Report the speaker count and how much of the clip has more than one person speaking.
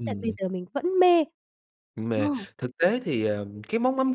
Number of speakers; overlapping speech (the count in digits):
2, about 16%